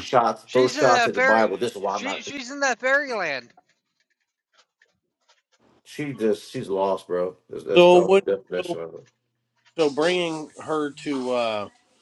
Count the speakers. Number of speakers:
three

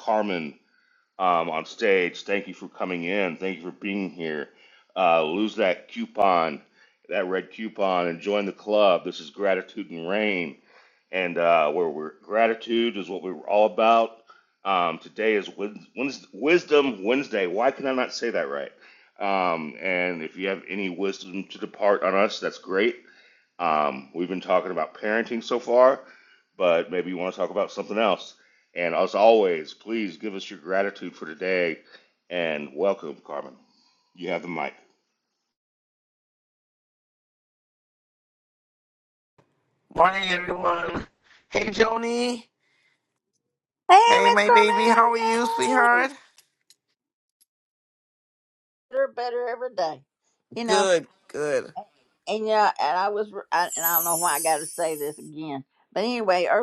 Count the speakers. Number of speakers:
three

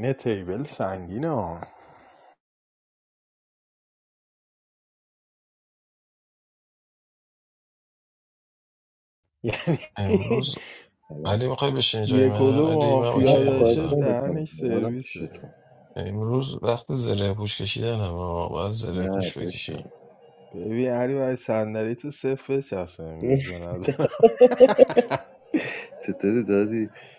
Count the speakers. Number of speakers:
three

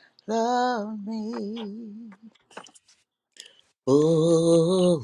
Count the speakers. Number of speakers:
two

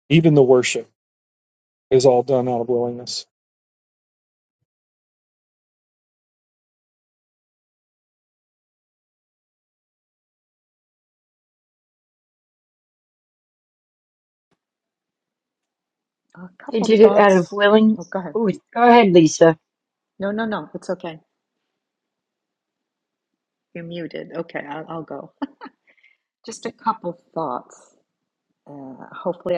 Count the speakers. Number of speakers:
three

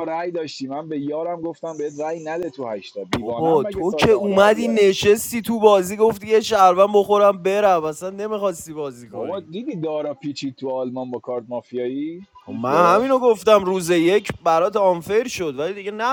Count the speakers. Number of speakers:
two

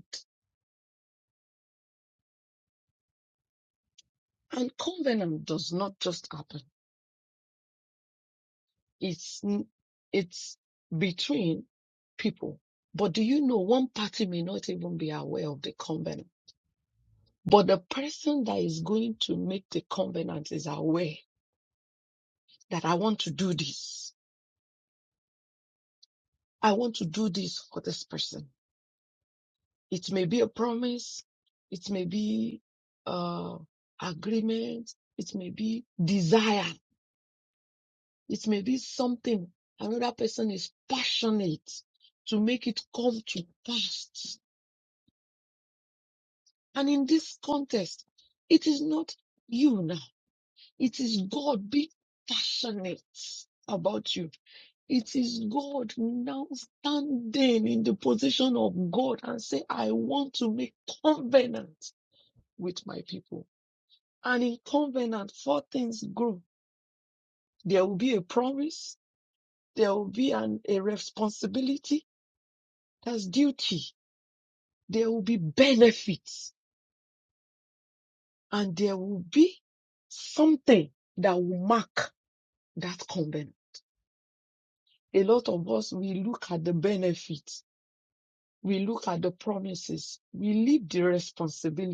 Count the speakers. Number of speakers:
one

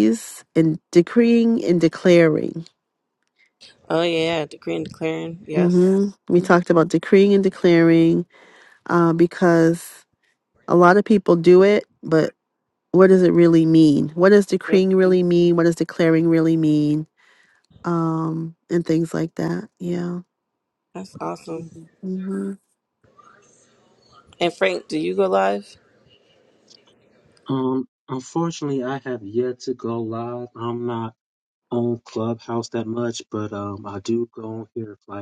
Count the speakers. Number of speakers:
three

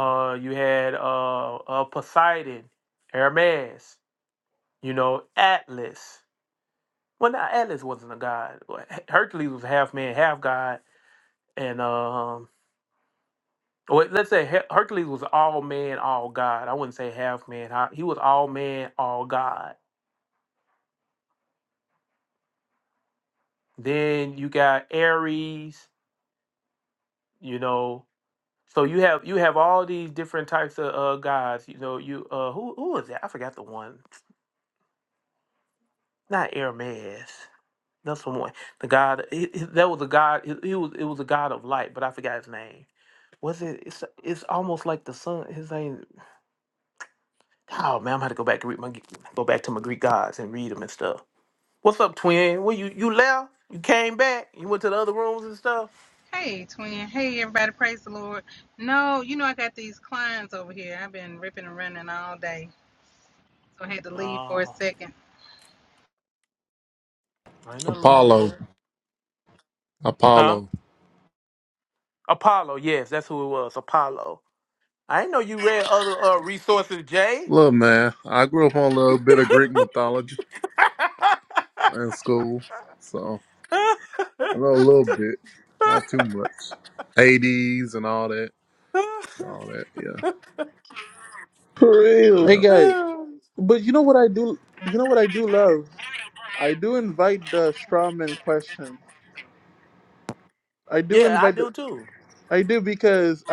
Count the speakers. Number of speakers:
four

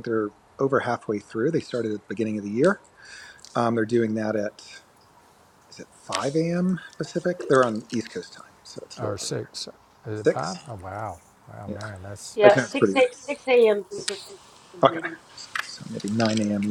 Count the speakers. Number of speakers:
three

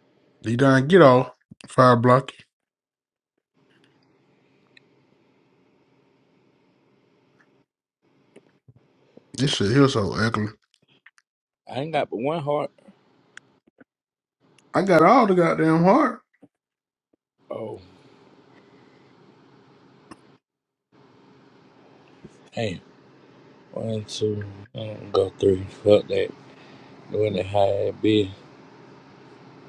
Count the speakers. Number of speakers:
two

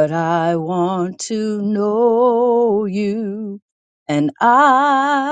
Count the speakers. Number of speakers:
one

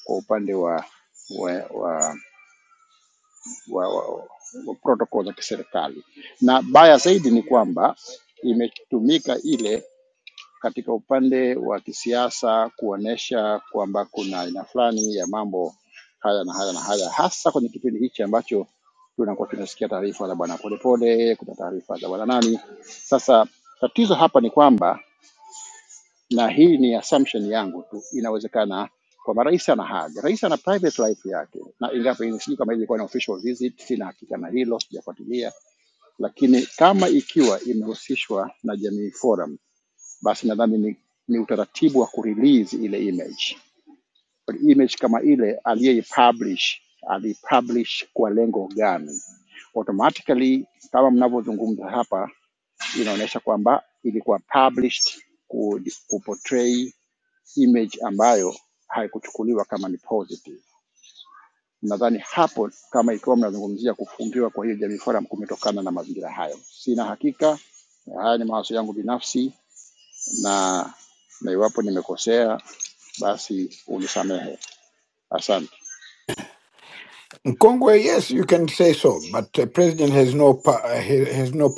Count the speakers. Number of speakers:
two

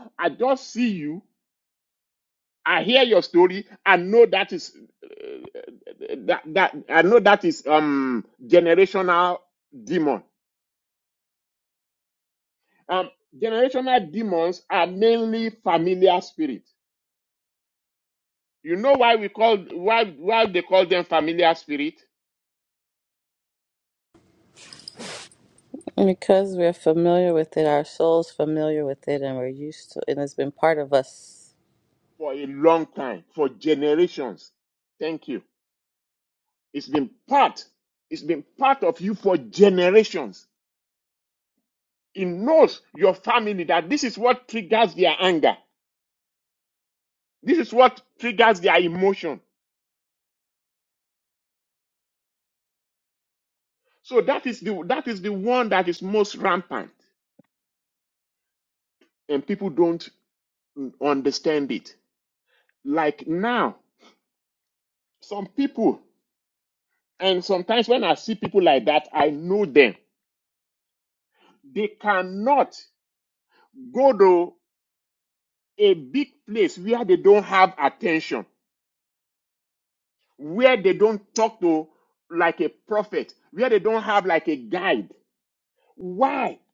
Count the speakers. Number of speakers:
two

